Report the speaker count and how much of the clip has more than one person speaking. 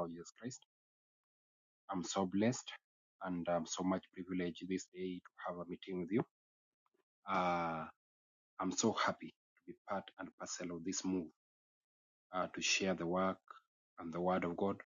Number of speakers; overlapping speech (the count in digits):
1, no overlap